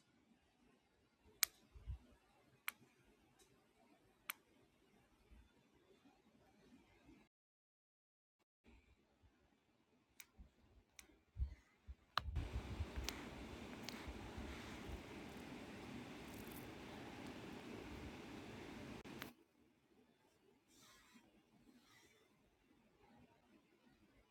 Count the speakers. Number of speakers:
0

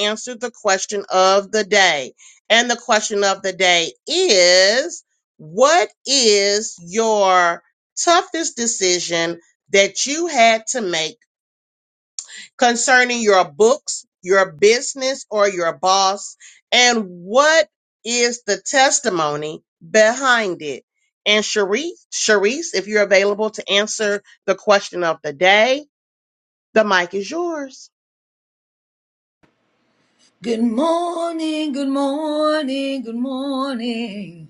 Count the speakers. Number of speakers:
2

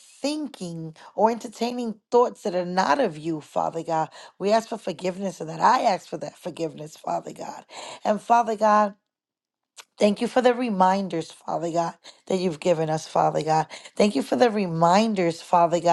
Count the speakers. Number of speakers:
1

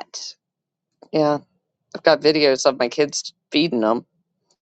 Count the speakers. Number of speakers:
1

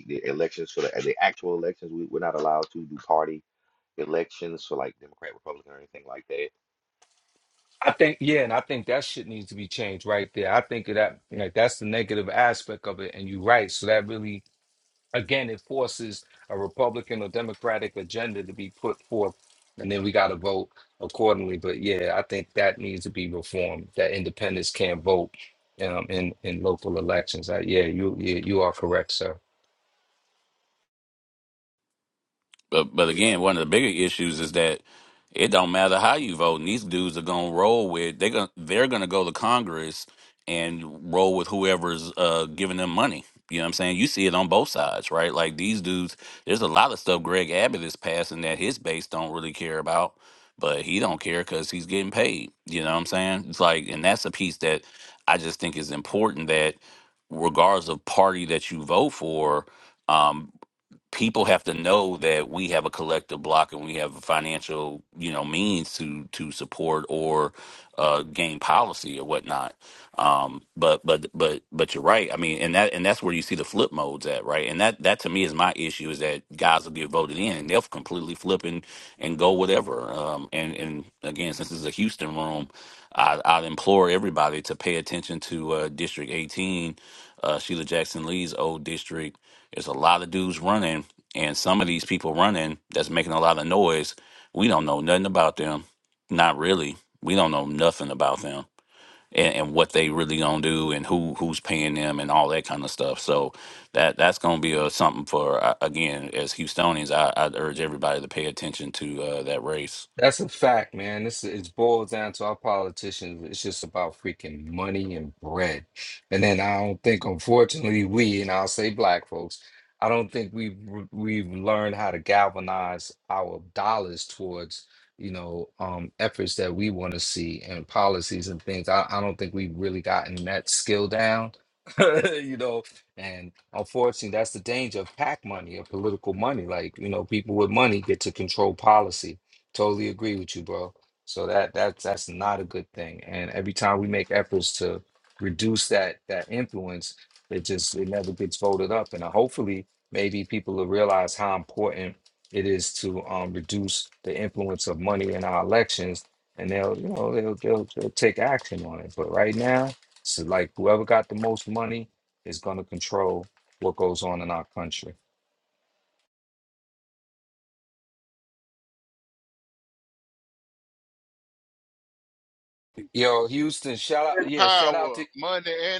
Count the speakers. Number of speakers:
4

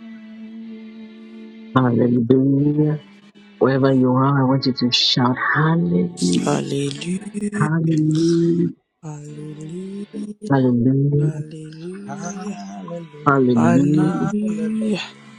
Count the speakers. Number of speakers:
3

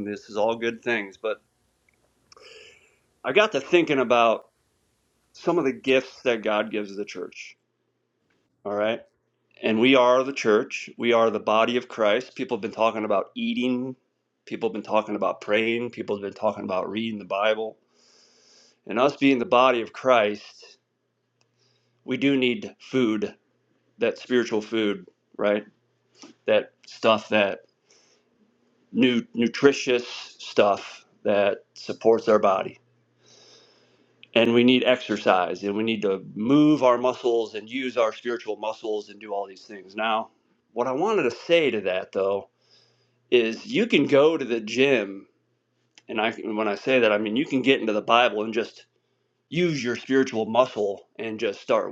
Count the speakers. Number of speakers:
1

